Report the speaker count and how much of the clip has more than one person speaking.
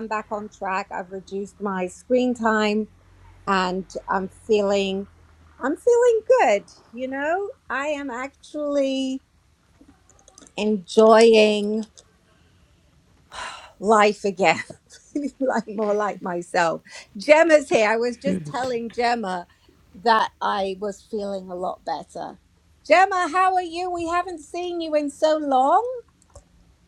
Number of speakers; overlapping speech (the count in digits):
1, no overlap